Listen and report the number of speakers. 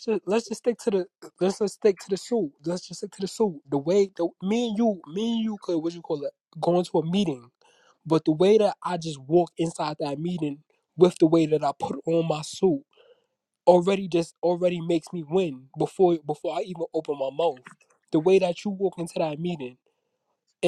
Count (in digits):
1